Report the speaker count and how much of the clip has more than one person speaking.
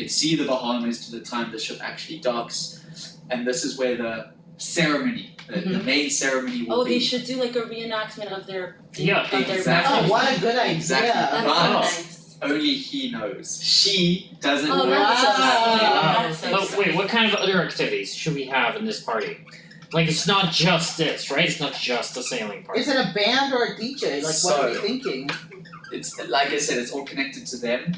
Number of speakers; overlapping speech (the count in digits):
4, about 22%